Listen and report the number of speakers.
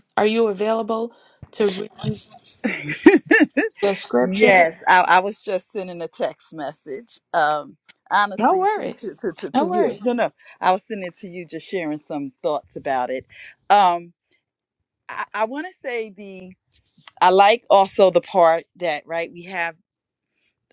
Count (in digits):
2